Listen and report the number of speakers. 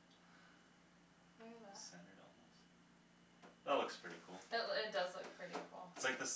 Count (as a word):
two